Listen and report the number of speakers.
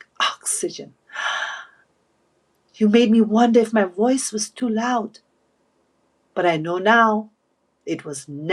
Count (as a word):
one